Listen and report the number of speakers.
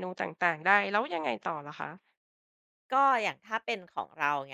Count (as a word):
two